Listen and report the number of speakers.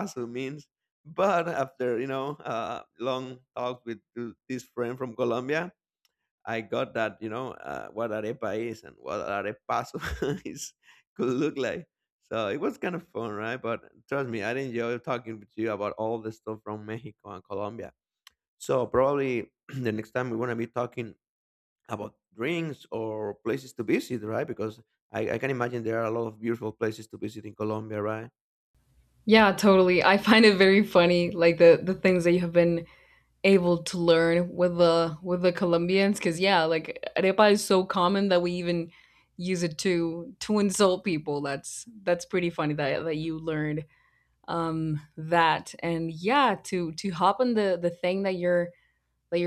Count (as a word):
two